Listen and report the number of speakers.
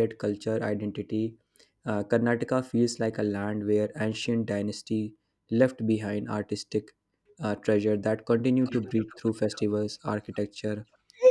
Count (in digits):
1